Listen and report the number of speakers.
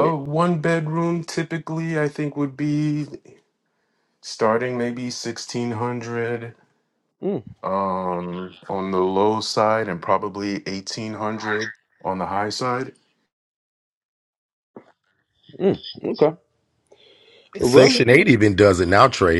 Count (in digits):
3